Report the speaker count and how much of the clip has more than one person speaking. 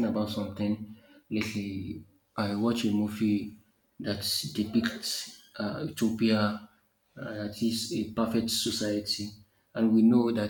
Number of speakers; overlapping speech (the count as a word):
one, no overlap